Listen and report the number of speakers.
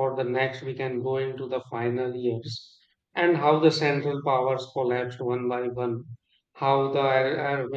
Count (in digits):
1